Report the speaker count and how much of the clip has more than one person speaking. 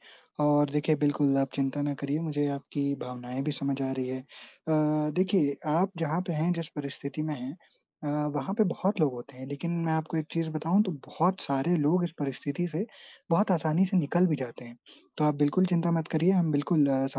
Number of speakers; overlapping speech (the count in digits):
1, no overlap